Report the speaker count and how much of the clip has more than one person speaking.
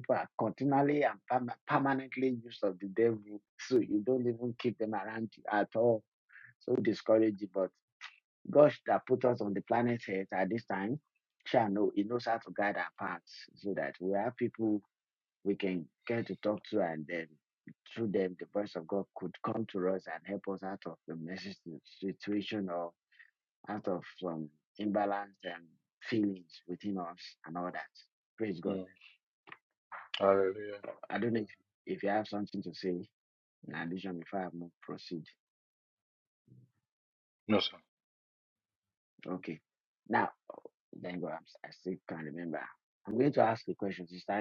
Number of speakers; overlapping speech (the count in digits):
2, under 1%